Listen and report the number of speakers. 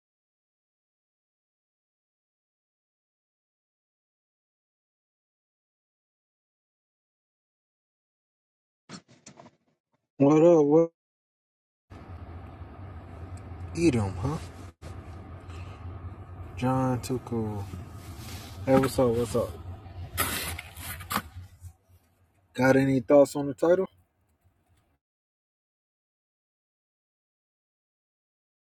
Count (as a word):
one